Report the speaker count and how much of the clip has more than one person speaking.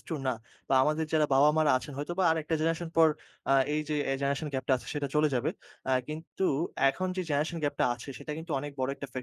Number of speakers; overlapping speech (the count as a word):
one, no overlap